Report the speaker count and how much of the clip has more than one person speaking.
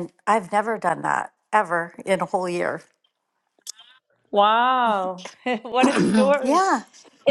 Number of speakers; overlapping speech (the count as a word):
two, about 2%